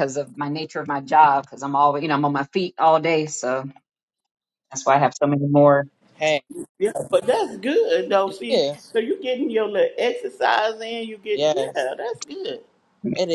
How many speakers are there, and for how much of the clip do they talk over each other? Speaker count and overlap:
3, about 6%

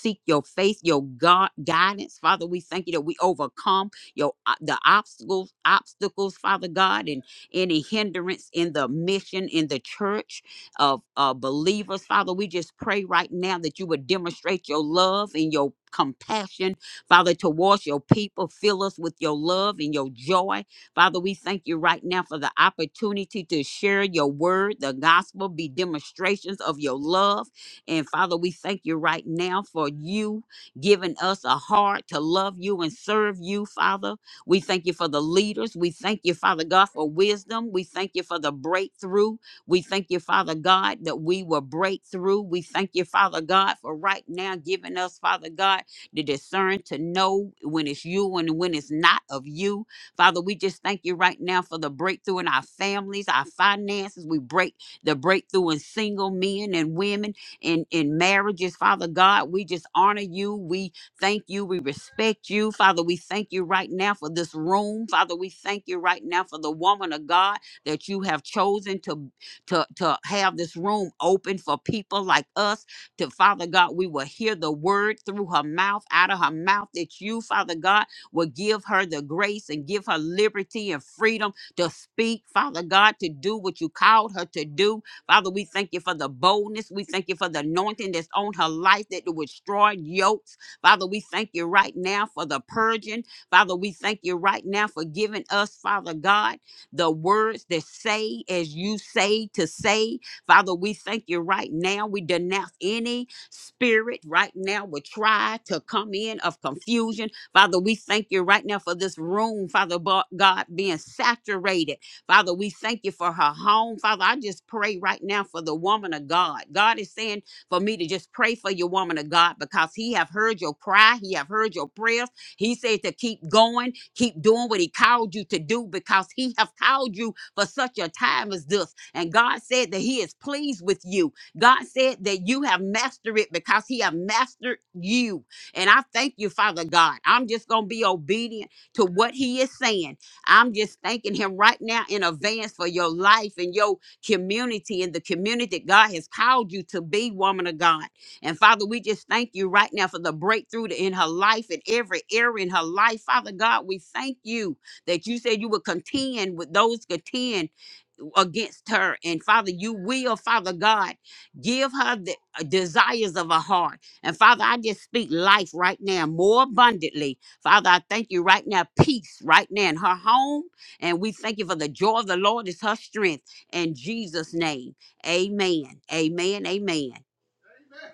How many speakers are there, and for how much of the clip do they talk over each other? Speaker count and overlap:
1, no overlap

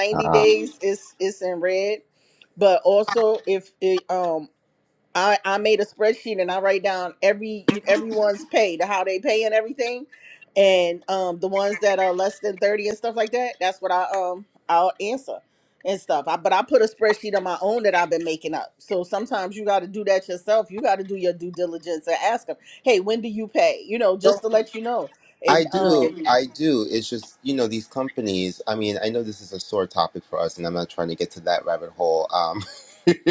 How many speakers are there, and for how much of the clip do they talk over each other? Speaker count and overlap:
2, about 3%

